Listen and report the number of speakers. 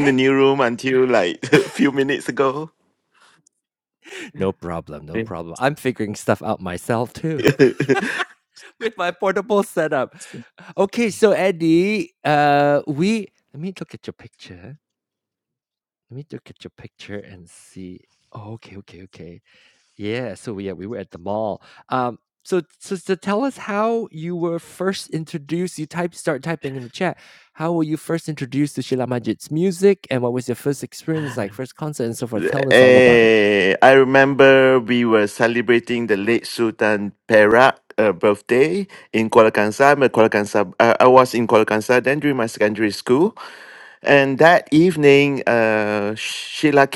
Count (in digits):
2